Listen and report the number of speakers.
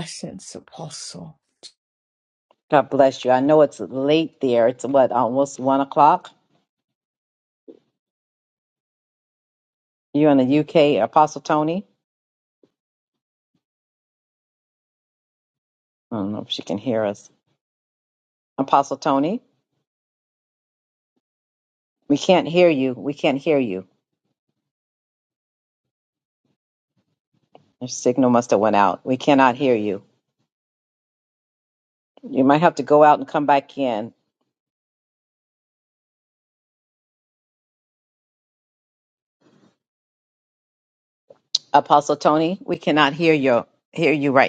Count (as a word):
two